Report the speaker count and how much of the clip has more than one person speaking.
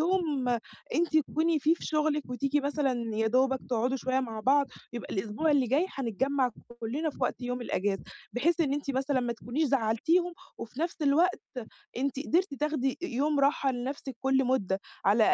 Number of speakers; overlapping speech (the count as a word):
one, no overlap